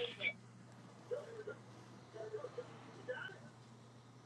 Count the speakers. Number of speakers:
0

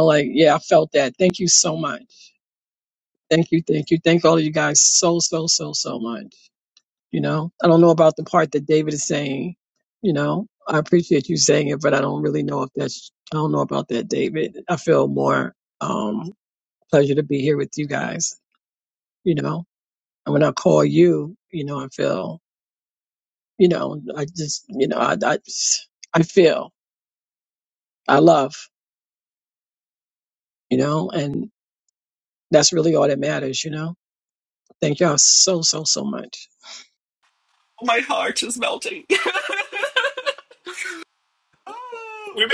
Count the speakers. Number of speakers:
2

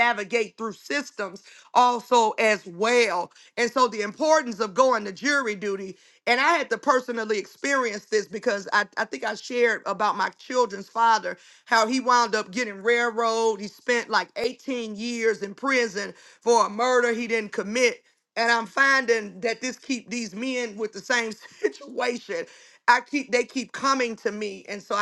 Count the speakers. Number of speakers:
1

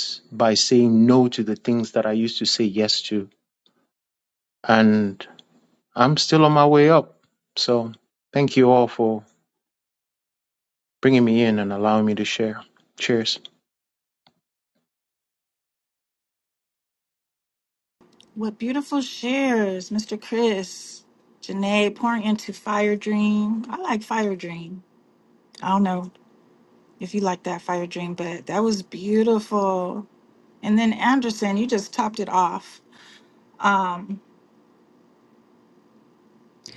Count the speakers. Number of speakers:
2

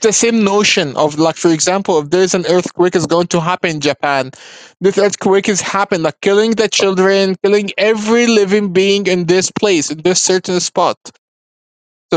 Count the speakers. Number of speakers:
1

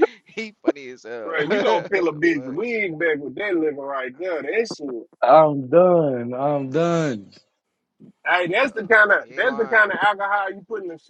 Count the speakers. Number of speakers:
3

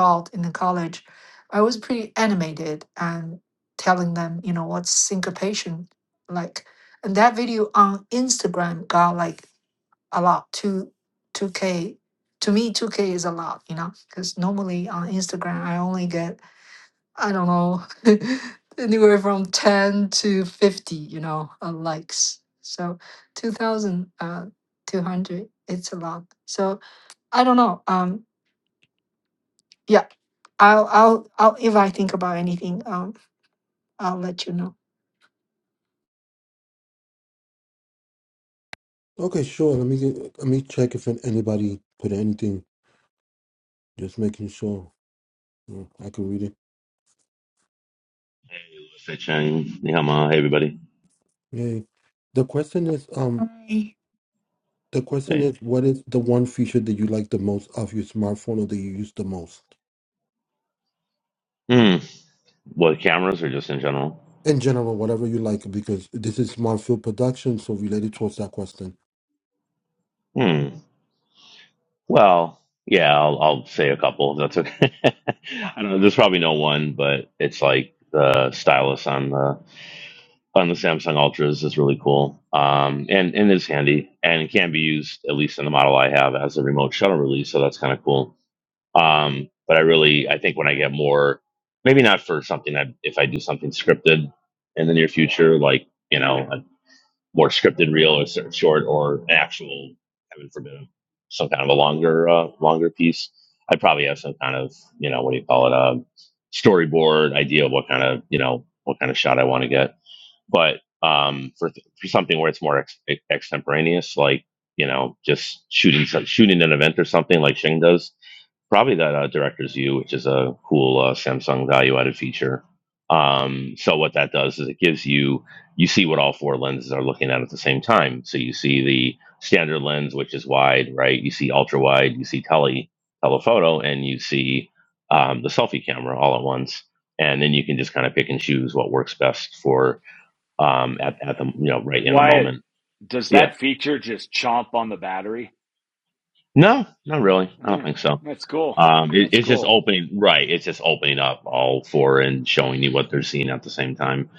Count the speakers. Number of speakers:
4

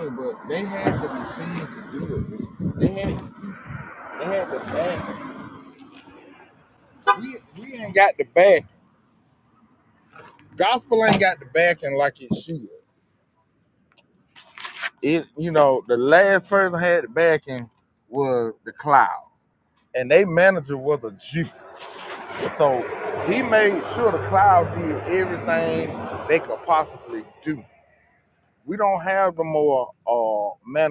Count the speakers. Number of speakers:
1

